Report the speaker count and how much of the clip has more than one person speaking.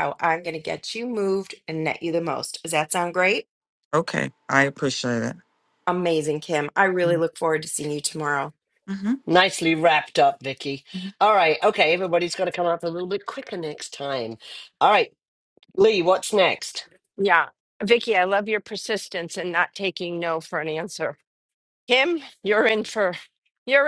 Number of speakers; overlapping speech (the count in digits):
4, about 1%